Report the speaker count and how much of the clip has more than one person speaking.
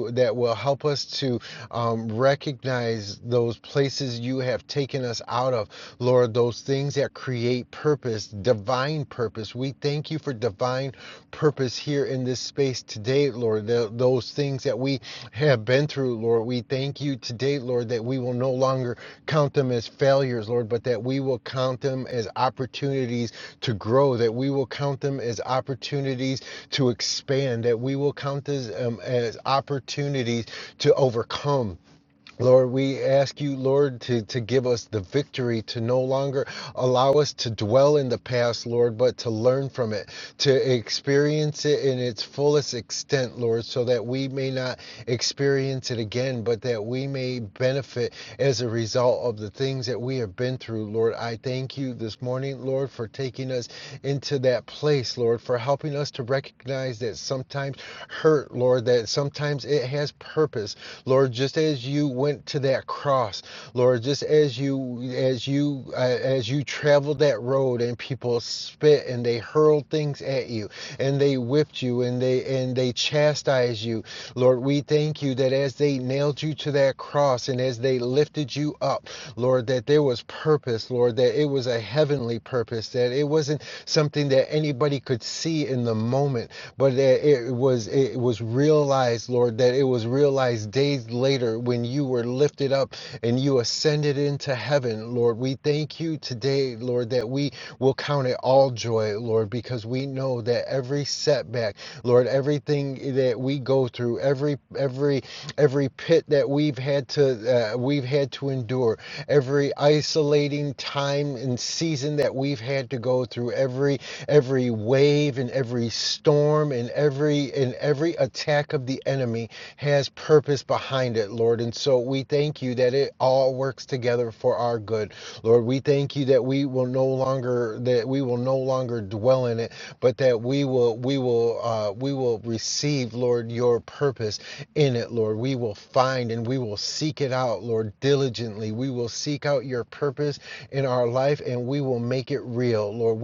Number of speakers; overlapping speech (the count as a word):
one, no overlap